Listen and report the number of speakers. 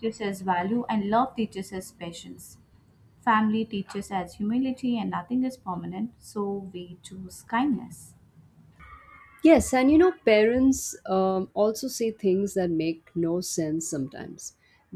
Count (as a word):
two